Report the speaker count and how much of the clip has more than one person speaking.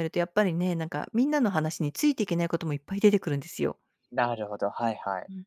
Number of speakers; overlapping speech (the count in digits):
2, no overlap